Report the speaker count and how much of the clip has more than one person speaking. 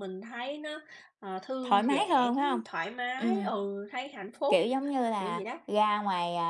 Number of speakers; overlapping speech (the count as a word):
two, about 29%